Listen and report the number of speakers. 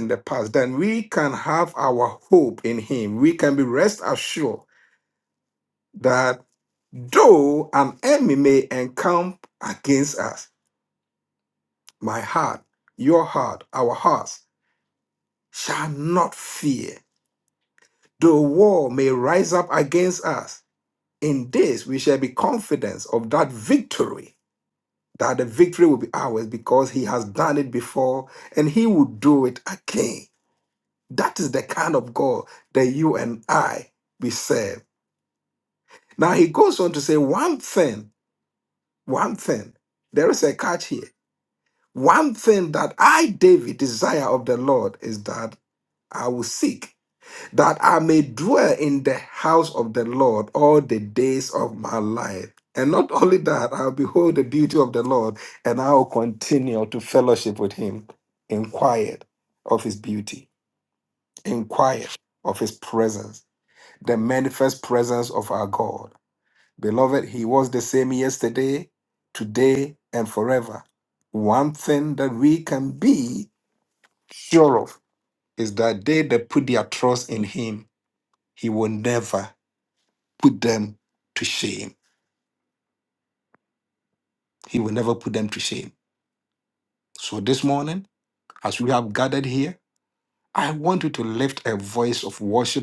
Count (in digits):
1